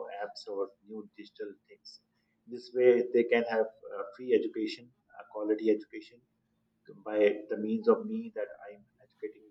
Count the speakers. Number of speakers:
1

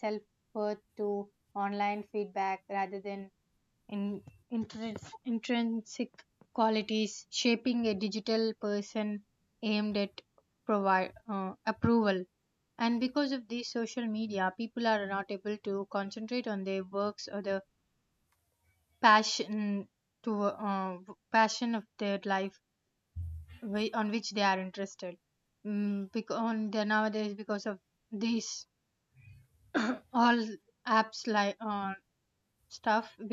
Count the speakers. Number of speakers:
1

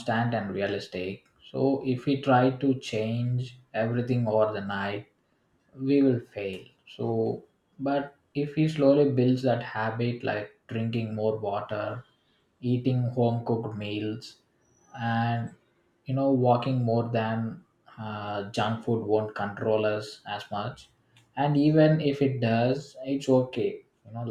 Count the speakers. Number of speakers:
1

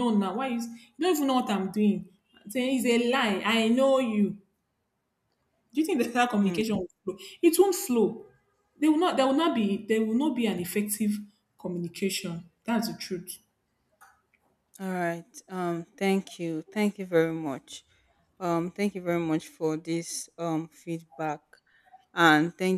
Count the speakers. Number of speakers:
2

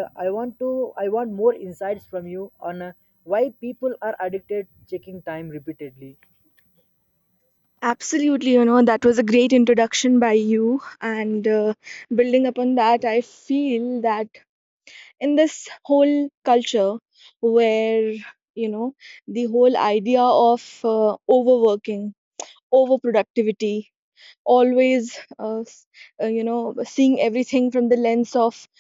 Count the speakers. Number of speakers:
2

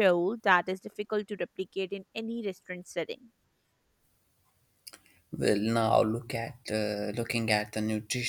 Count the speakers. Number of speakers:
2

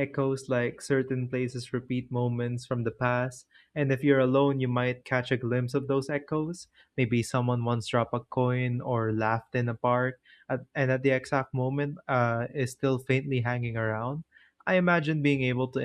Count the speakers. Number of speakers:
1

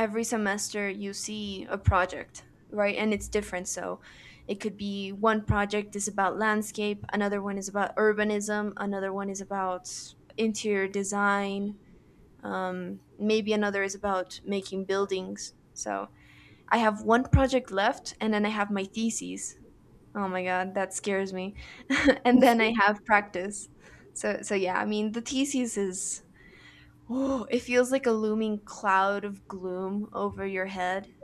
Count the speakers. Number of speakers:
1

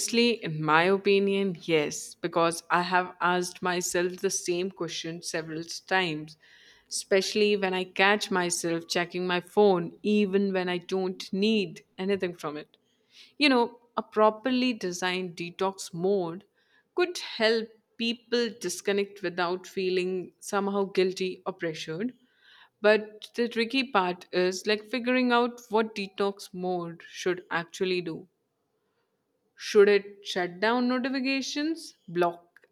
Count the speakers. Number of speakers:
1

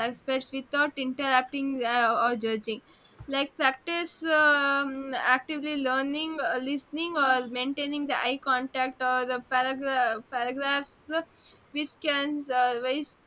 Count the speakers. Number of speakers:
1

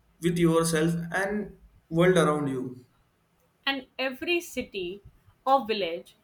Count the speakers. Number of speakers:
2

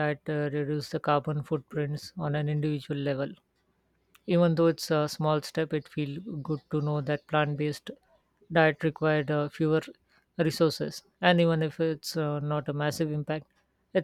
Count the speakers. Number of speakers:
1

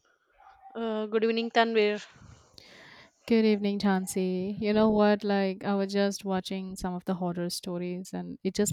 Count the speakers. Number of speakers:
2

